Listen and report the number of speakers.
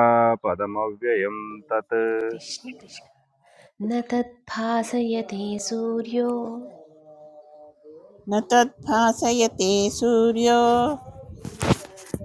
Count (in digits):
3